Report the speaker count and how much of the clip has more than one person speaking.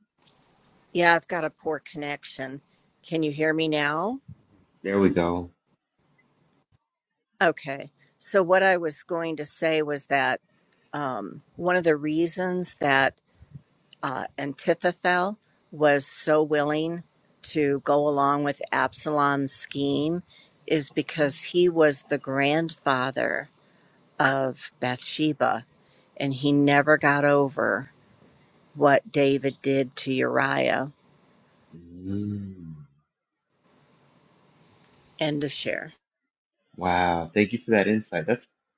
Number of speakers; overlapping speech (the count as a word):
two, no overlap